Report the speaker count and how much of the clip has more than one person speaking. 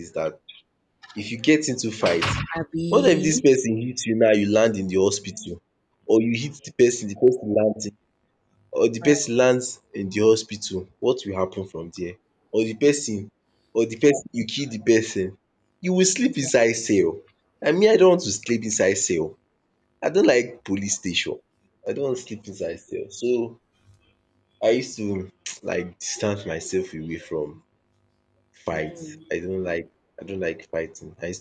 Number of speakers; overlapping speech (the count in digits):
2, about 3%